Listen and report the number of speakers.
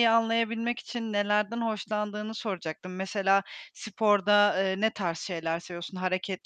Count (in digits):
1